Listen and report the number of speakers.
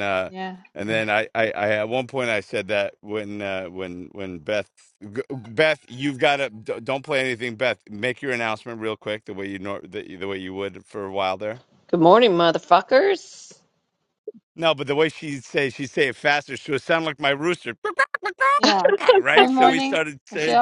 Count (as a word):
three